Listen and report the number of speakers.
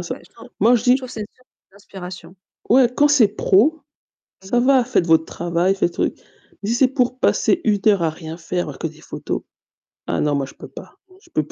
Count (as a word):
two